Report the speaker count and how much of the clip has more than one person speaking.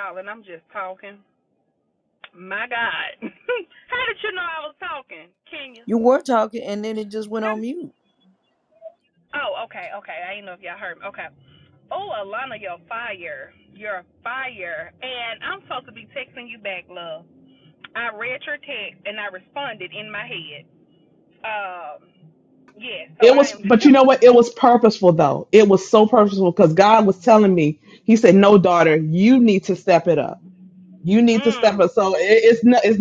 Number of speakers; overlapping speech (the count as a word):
three, about 3%